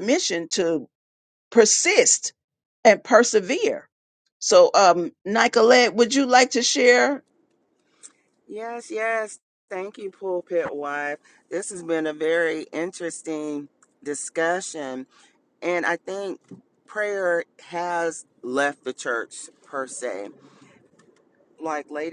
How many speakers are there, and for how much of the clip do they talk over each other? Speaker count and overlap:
2, no overlap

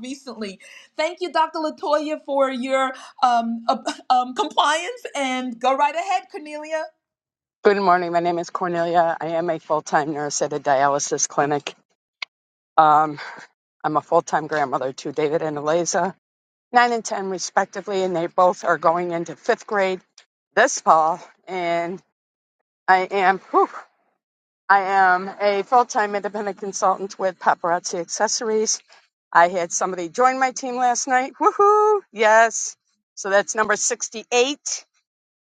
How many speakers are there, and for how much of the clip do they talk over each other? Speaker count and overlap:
2, no overlap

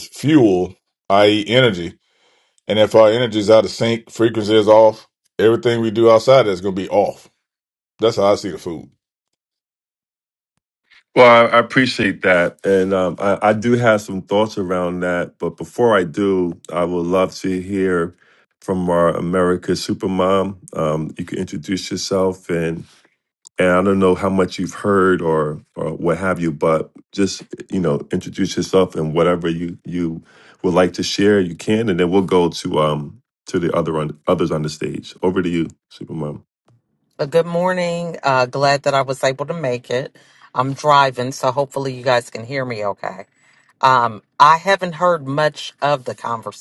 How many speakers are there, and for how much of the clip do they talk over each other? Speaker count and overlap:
3, no overlap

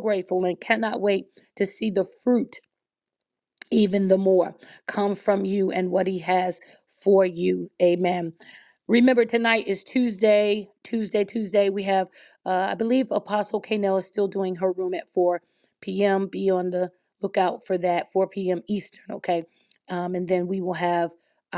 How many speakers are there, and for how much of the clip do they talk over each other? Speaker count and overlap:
1, no overlap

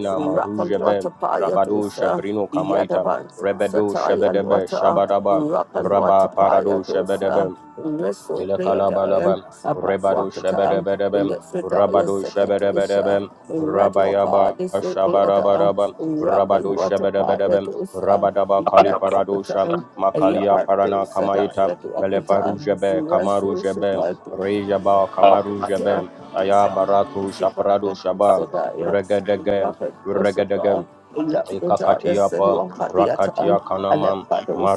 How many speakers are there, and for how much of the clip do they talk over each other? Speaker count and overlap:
2, about 66%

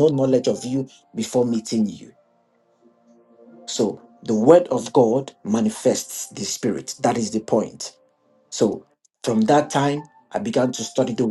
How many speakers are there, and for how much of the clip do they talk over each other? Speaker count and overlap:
1, no overlap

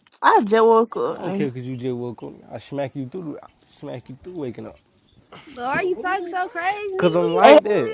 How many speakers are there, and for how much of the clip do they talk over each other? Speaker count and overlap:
3, about 17%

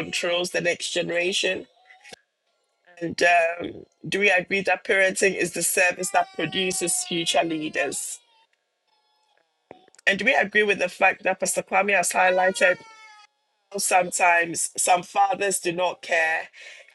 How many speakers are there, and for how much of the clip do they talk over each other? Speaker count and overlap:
1, no overlap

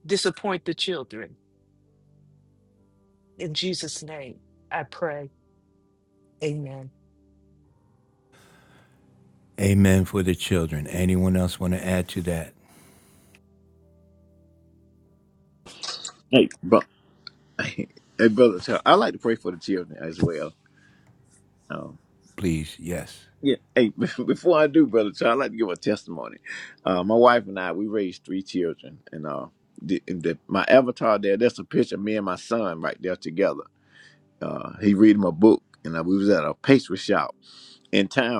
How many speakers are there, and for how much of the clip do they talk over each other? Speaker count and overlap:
3, no overlap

